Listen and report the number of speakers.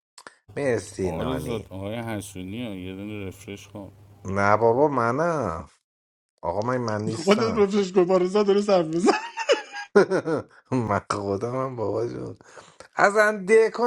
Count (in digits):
3